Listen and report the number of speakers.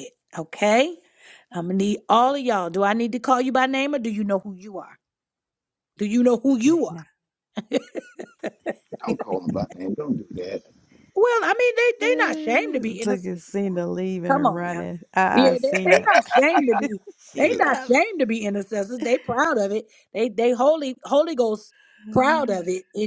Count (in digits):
3